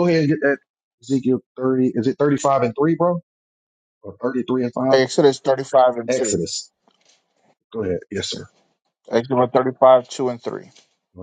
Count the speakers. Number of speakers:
2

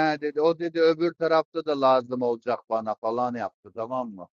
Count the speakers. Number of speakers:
1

